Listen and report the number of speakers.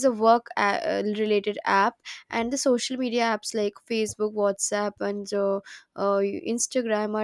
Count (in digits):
1